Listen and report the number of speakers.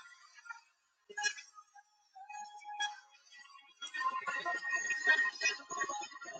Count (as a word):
zero